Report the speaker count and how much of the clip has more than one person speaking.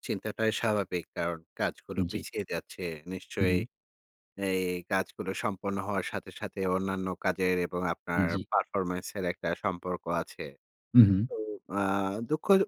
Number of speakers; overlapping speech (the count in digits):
2, about 6%